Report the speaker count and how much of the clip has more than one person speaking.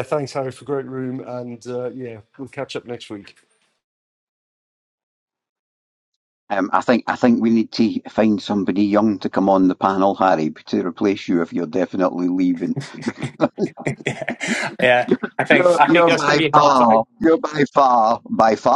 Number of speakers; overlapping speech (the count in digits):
3, about 9%